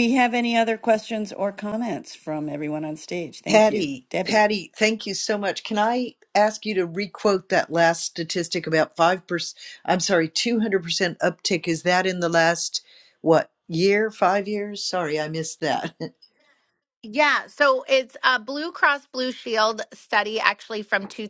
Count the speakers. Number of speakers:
3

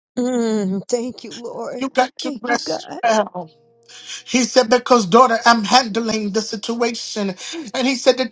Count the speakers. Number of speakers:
2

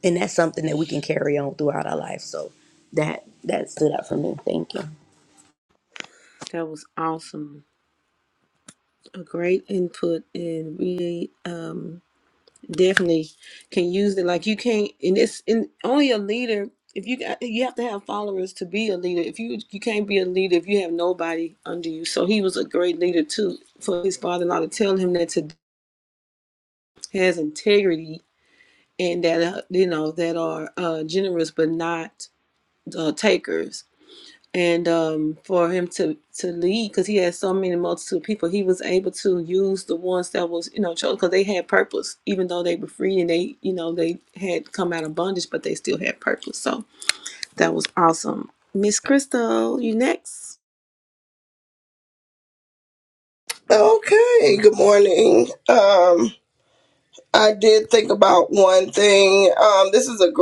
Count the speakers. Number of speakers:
3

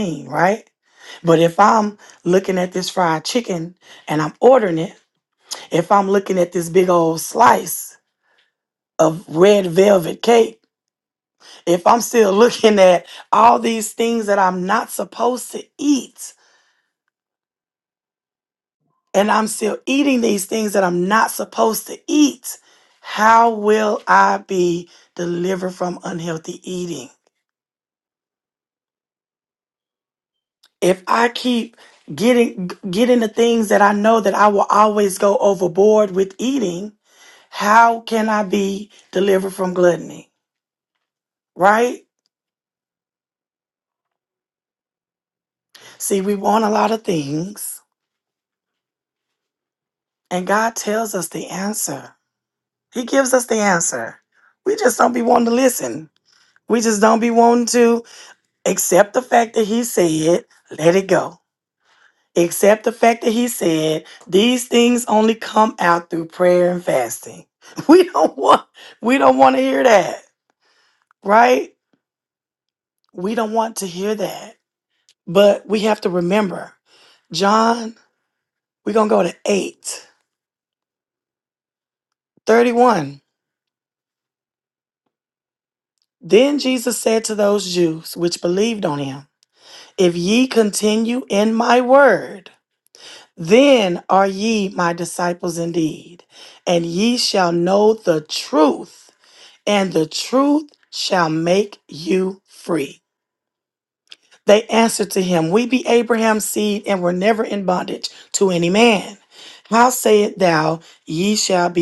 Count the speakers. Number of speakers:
1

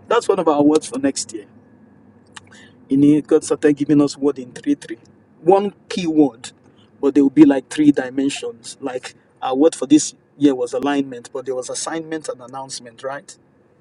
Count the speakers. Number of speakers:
1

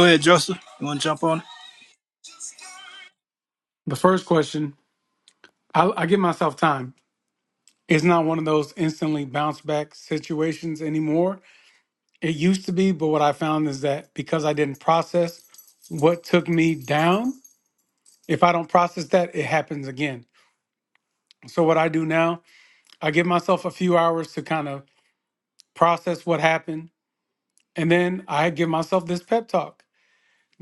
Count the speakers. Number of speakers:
2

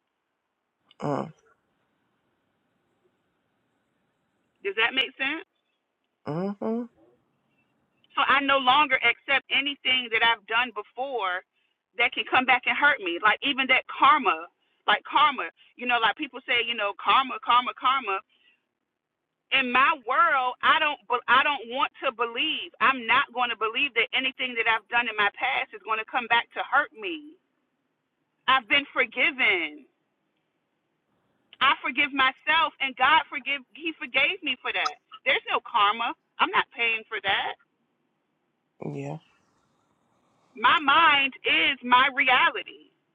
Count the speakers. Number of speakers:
2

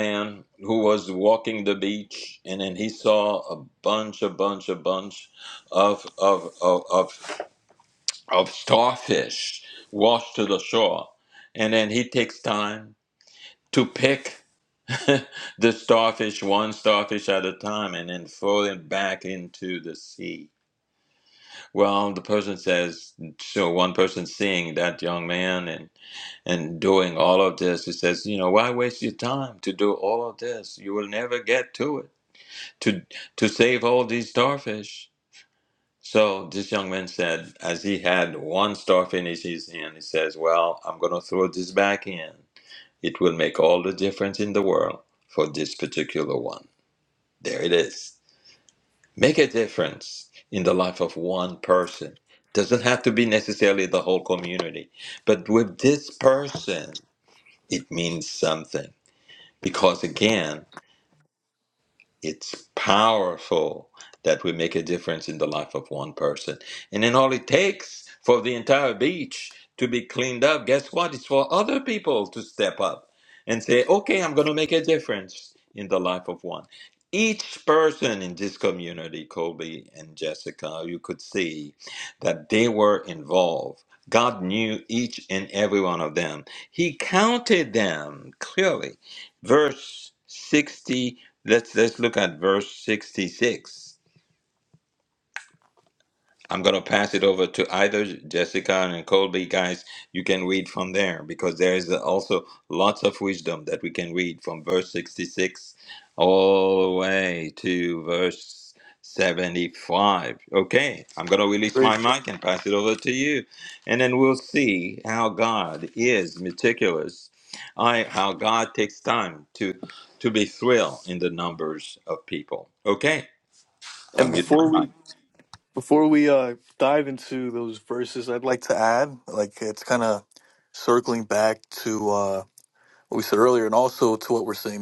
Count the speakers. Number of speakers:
2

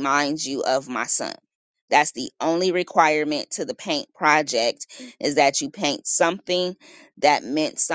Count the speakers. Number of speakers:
1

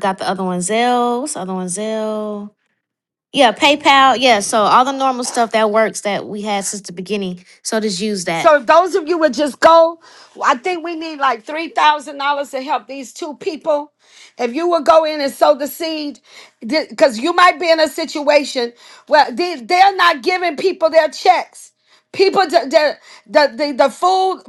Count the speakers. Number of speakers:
2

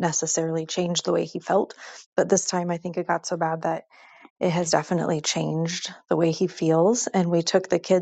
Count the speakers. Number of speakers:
1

